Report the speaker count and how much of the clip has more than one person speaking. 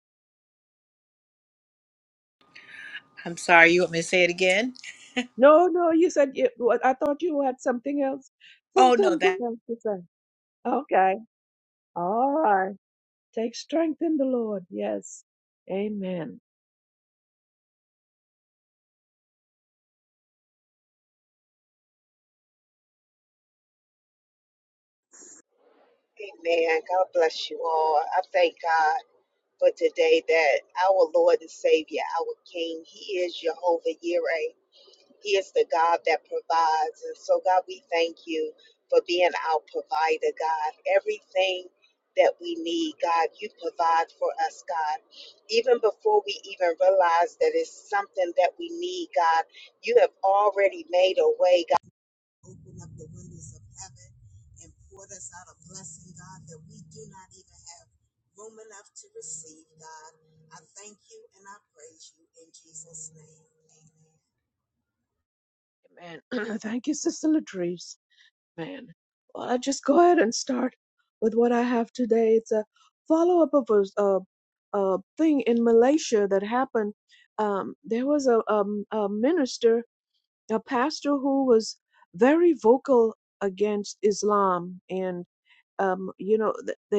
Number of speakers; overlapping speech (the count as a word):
three, about 1%